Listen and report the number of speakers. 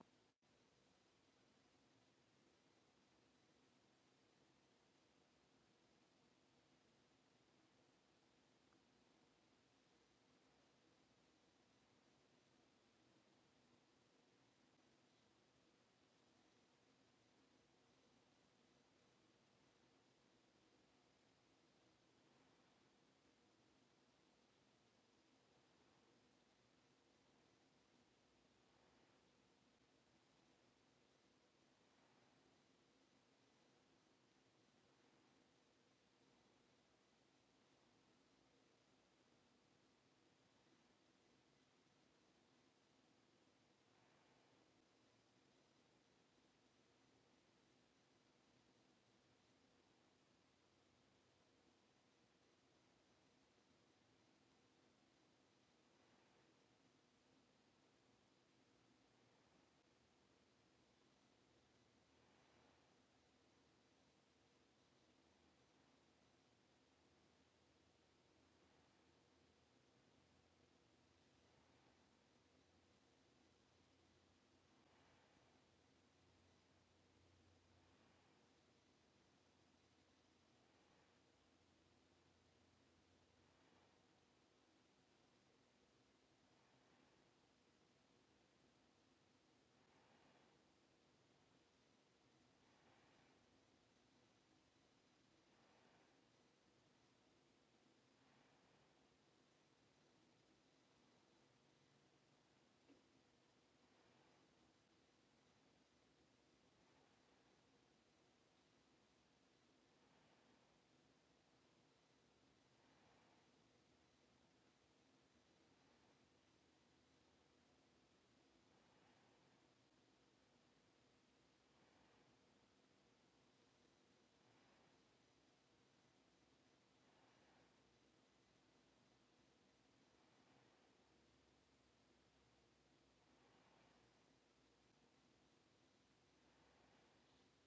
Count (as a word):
zero